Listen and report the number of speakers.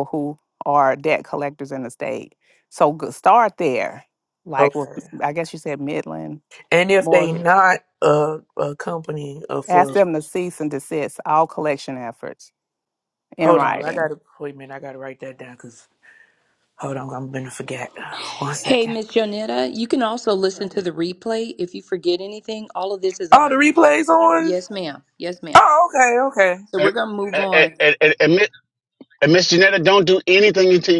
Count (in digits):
4